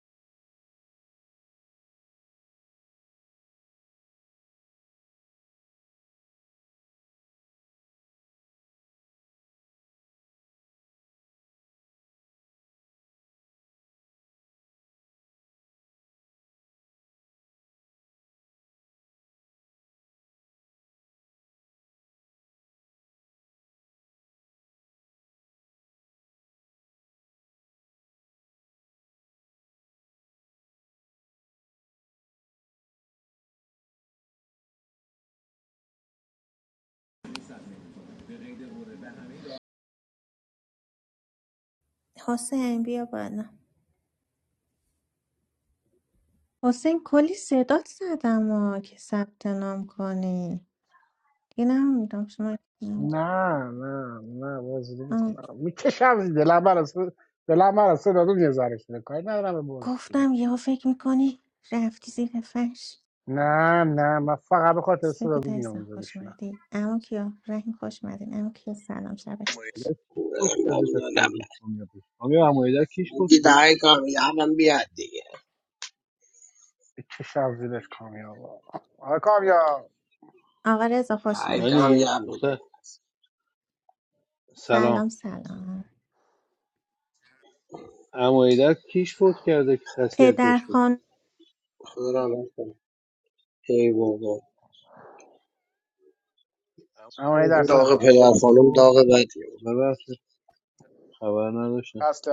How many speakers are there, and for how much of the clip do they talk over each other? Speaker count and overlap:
4, about 6%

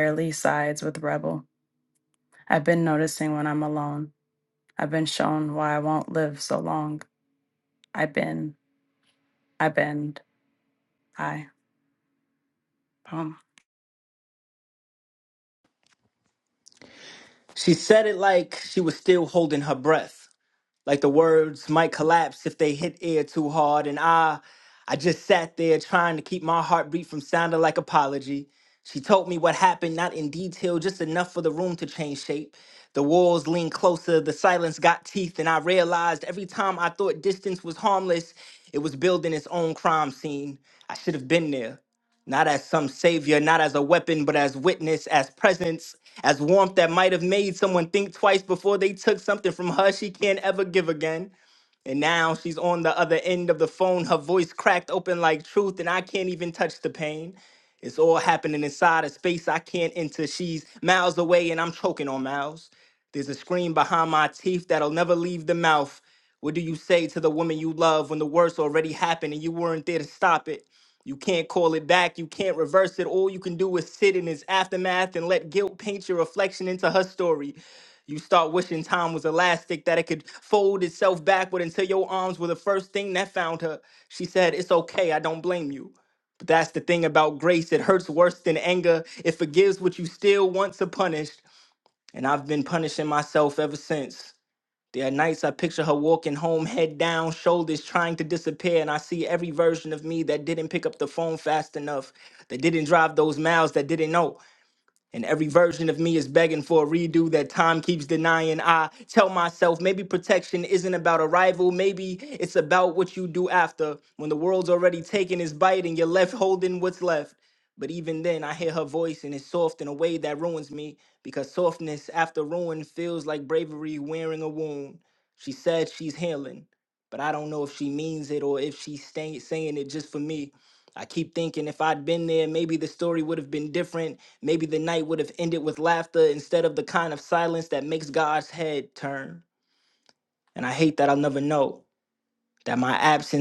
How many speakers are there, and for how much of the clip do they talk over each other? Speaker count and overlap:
2, no overlap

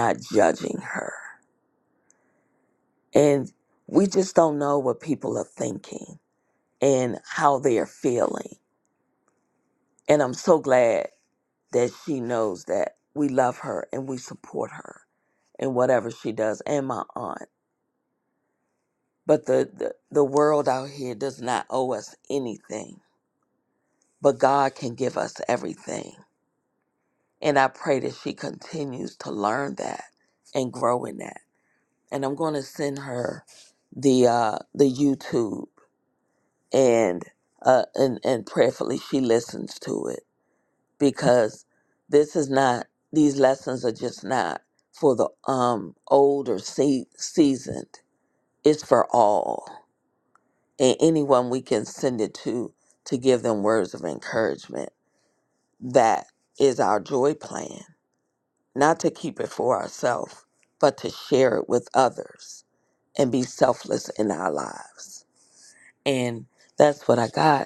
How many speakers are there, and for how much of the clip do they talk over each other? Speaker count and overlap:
1, no overlap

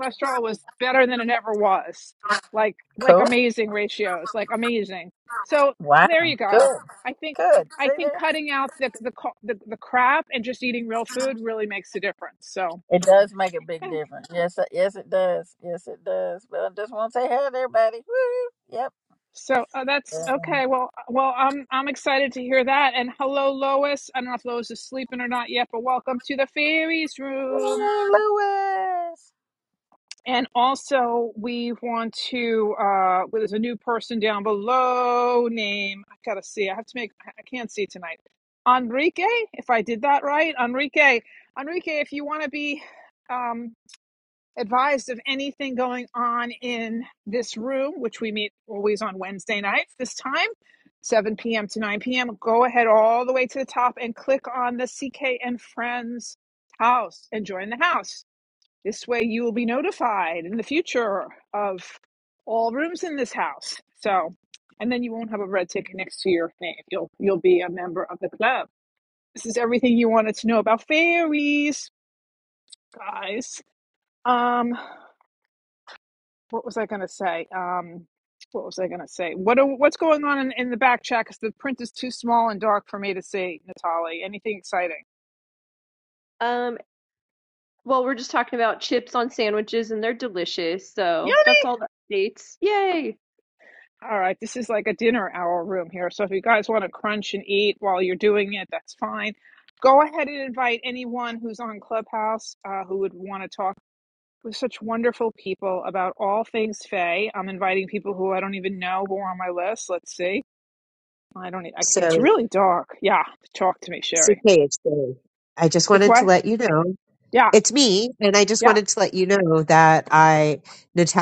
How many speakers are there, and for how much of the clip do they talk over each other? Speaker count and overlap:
4, about 2%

